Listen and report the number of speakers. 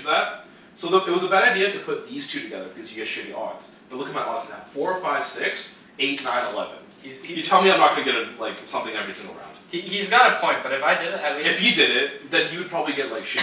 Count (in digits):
2